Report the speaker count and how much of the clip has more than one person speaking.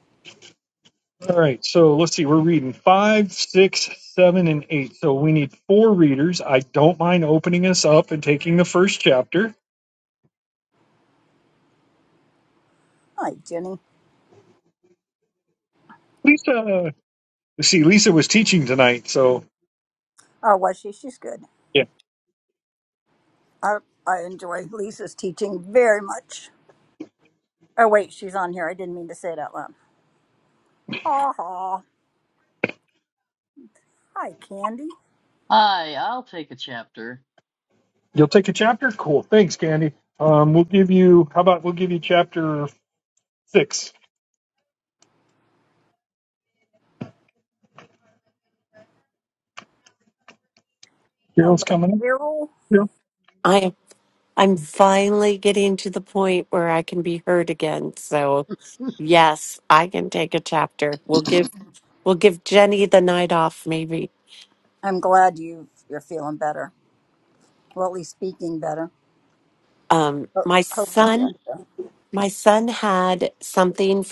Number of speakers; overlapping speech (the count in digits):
4, about 2%